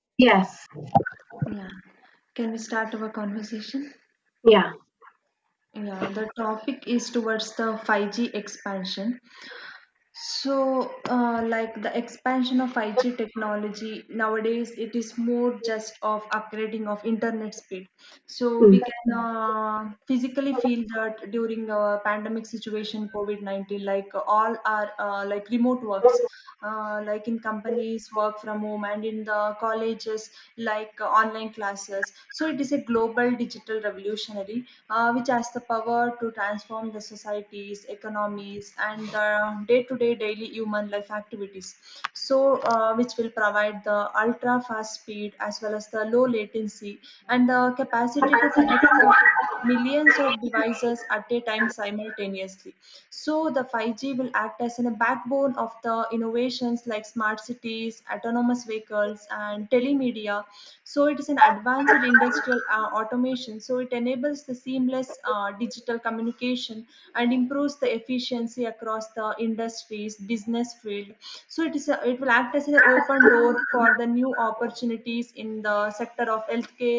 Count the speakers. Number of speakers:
two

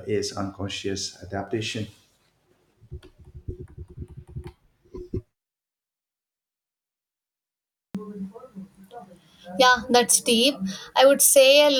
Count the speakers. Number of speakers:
two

